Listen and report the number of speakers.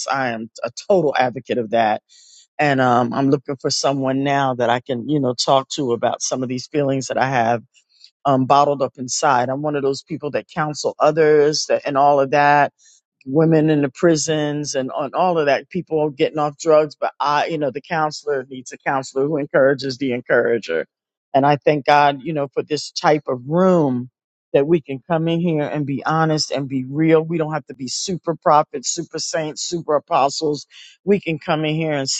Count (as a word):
one